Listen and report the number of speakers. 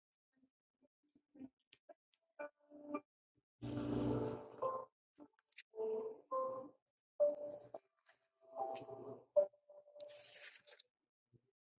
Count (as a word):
zero